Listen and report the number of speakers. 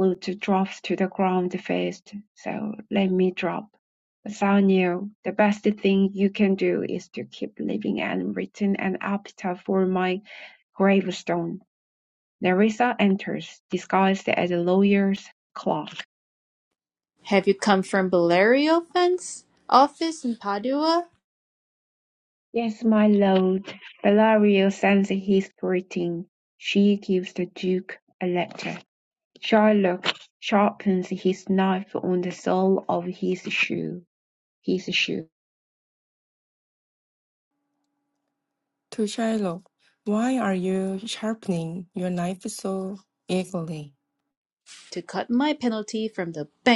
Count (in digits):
3